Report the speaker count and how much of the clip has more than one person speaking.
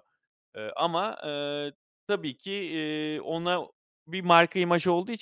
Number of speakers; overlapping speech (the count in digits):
1, no overlap